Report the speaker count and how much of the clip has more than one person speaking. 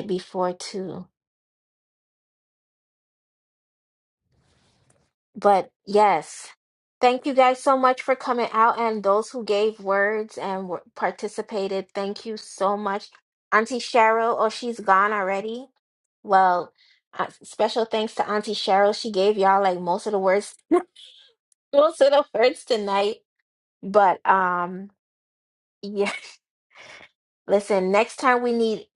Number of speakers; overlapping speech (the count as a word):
one, no overlap